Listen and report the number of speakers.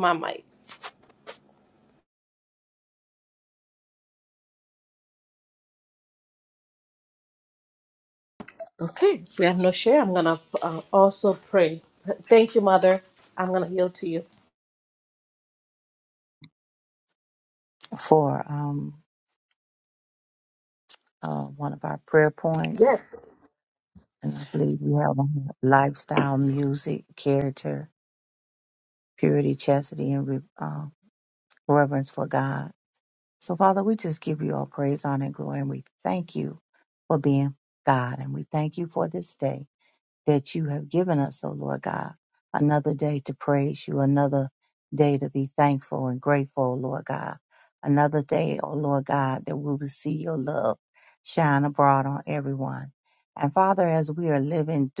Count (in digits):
2